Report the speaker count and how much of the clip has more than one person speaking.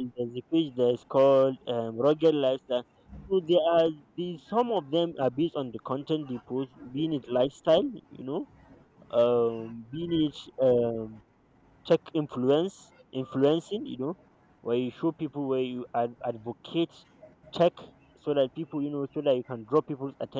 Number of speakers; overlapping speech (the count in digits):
1, no overlap